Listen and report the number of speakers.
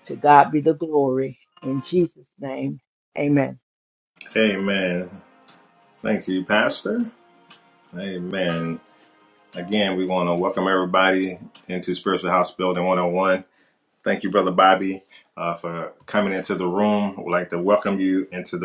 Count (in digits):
2